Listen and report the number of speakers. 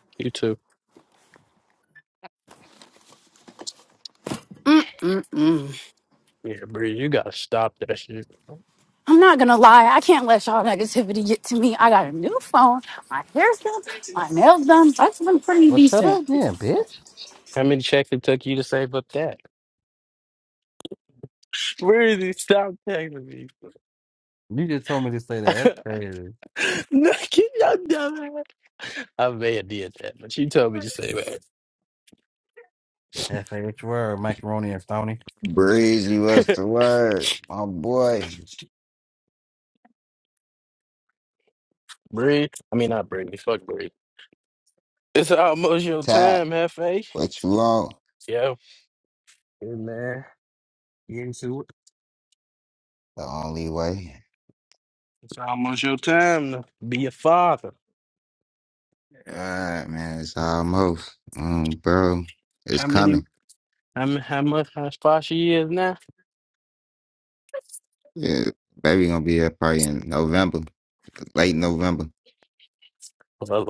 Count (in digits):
4